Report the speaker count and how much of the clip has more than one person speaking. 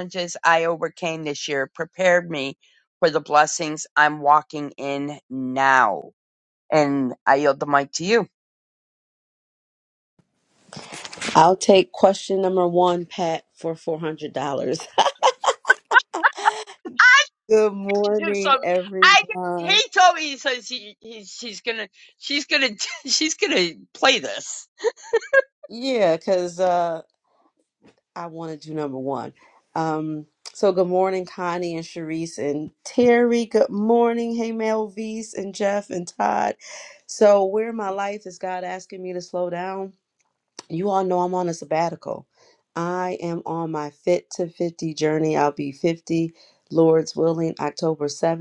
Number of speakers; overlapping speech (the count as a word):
two, about 2%